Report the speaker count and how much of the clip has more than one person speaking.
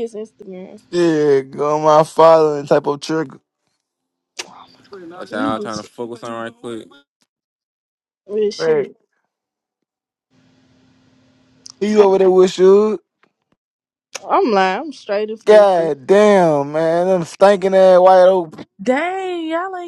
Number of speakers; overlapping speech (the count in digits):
4, about 7%